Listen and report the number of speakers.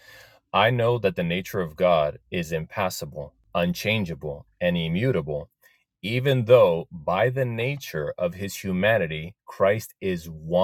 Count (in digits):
1